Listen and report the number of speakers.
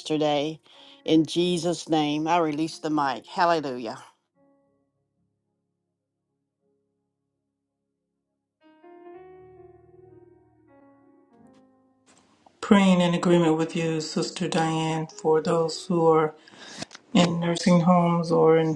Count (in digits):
2